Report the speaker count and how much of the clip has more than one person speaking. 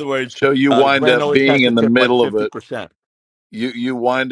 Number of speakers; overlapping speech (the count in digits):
2, about 51%